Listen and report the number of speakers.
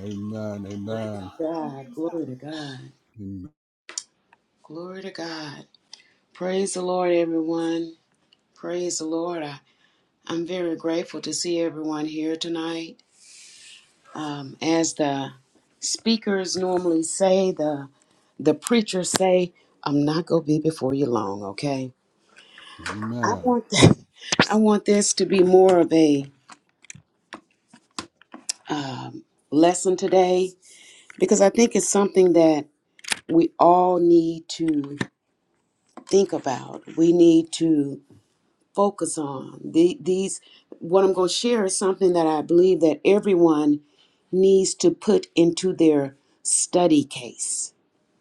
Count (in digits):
2